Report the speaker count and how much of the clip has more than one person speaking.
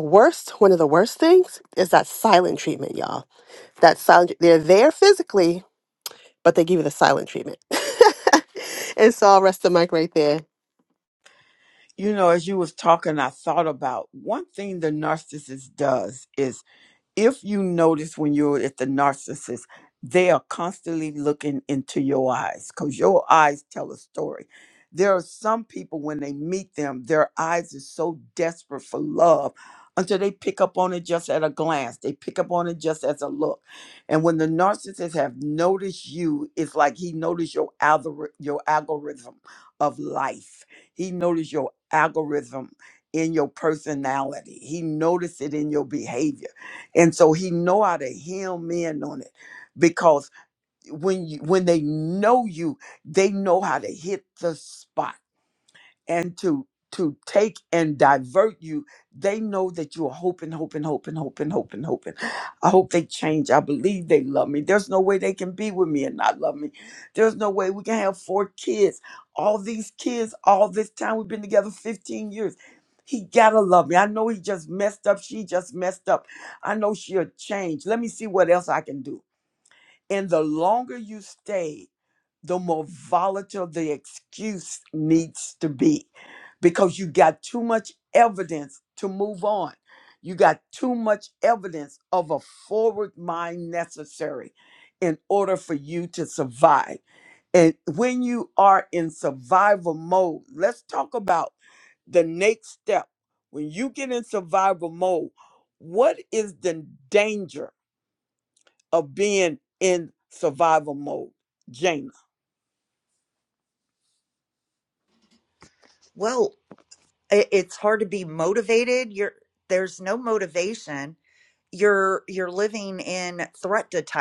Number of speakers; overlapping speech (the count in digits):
3, no overlap